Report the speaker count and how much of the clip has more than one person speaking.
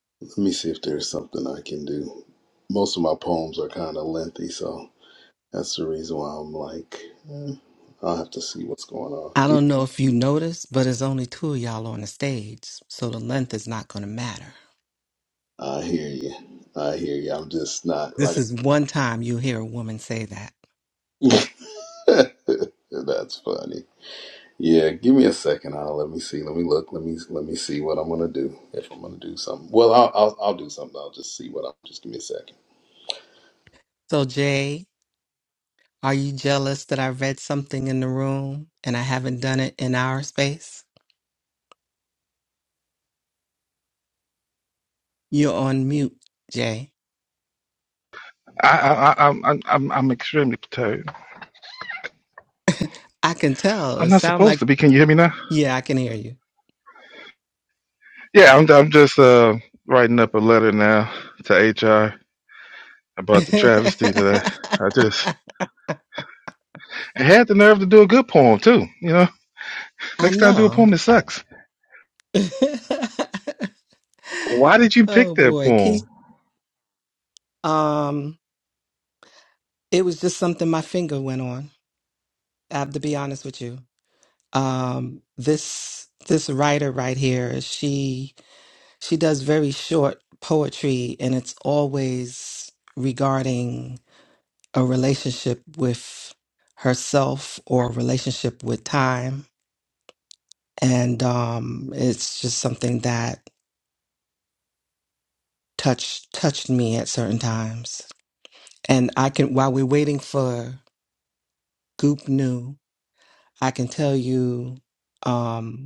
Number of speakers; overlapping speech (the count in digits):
3, about 2%